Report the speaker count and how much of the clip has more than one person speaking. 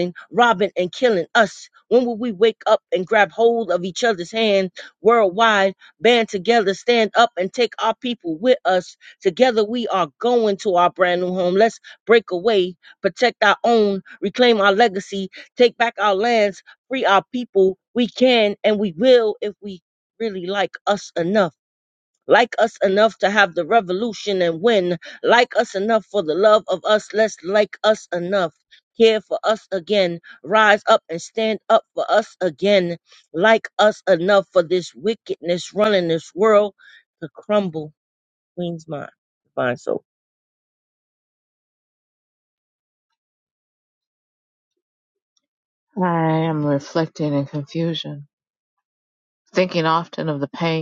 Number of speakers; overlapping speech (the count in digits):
2, no overlap